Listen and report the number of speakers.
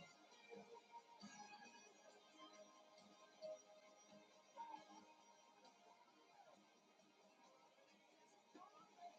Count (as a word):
zero